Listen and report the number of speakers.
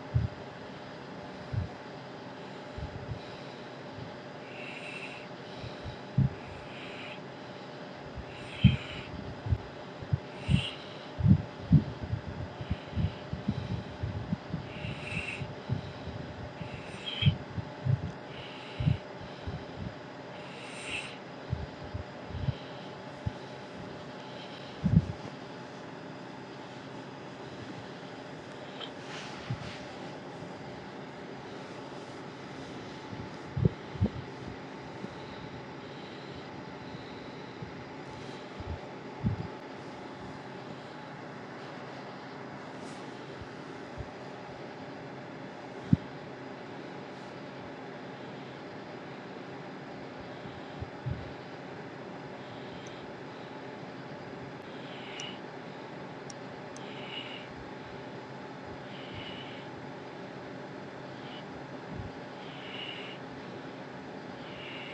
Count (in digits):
0